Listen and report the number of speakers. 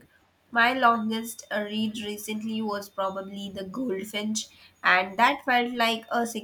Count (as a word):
one